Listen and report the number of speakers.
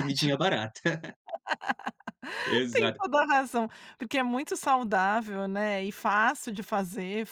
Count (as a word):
two